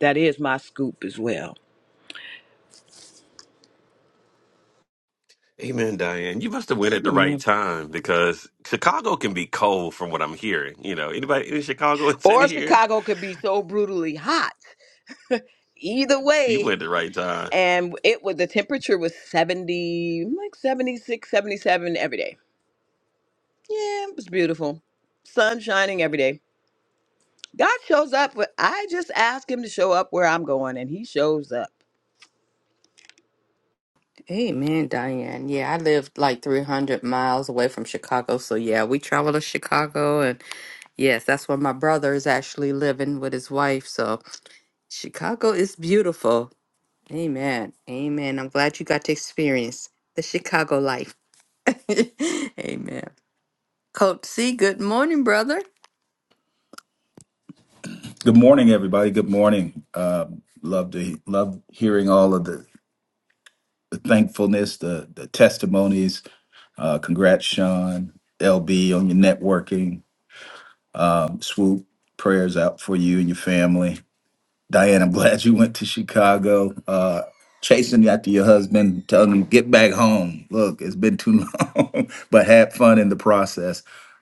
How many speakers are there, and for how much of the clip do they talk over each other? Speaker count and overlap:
four, about 1%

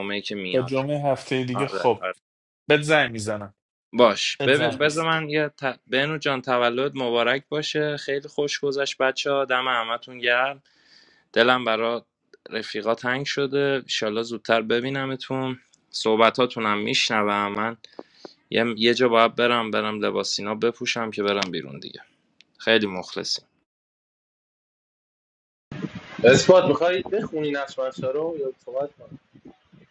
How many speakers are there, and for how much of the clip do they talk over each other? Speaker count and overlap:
three, about 5%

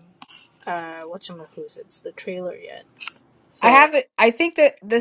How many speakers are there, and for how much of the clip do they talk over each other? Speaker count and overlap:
two, about 5%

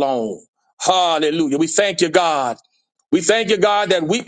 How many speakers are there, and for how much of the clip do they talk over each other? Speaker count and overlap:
one, no overlap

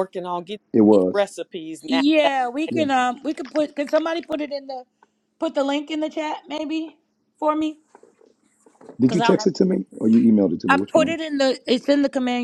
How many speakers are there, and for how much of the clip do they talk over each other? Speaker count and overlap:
three, about 9%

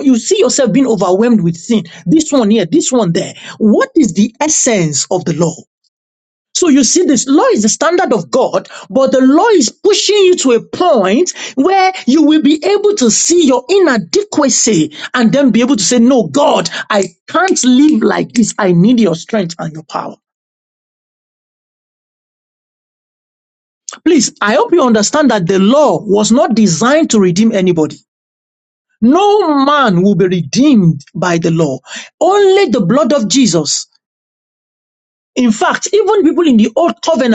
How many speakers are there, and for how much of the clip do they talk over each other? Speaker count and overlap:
one, no overlap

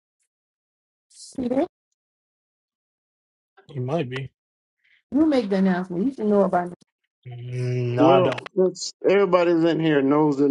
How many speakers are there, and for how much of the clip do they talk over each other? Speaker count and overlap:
three, about 4%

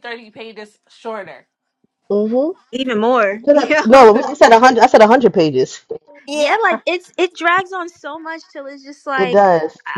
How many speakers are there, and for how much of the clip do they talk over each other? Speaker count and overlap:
three, about 14%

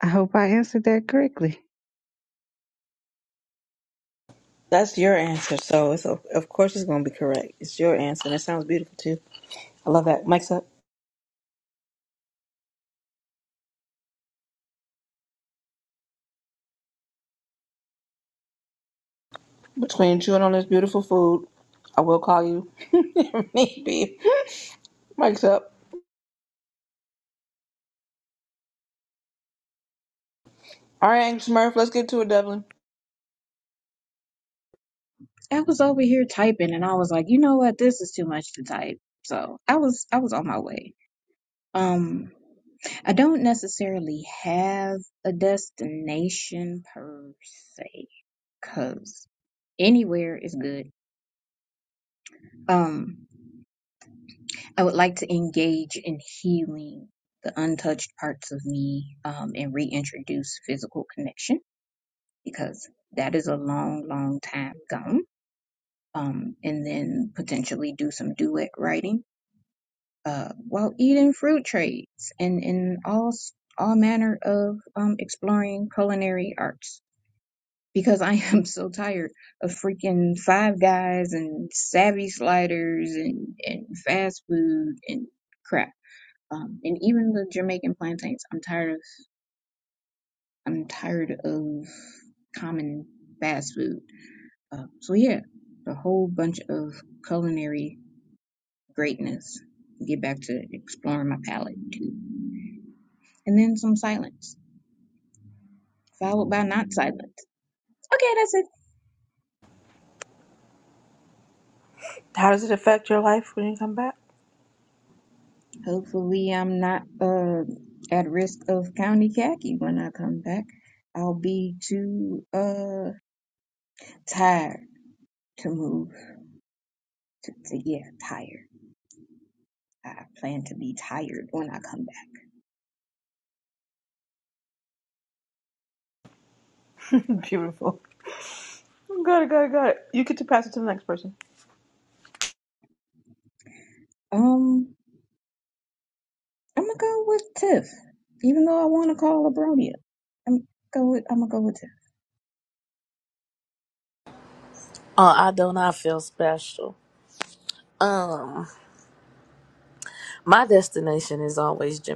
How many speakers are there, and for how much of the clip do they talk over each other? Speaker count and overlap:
four, no overlap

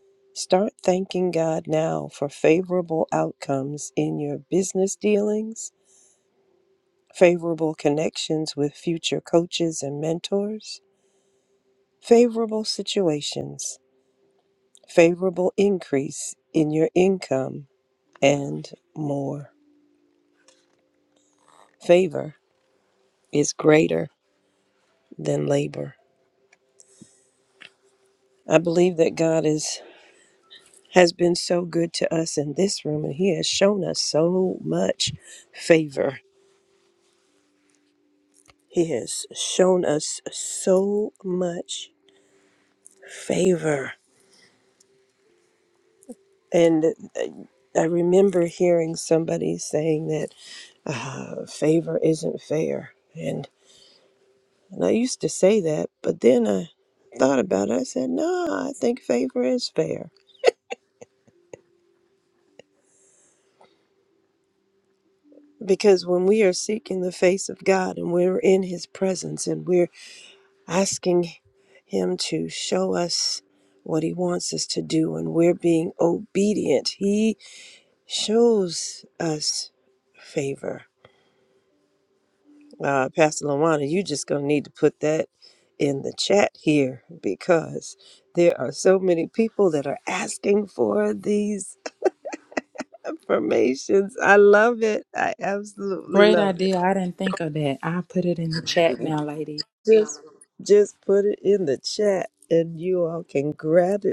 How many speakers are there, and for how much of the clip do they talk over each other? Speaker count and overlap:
two, about 1%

